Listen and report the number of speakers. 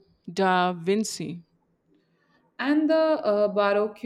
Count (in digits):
2